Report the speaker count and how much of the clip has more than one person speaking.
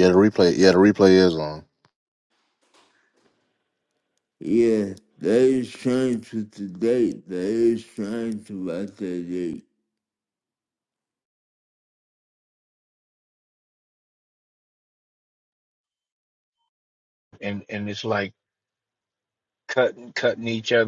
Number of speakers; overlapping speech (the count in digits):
3, no overlap